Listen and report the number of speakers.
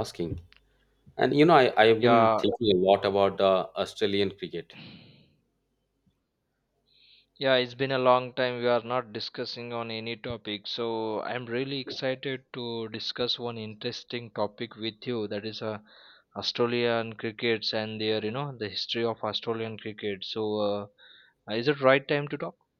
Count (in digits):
2